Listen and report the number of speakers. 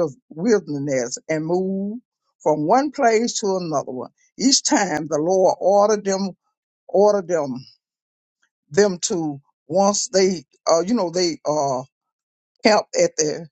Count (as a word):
one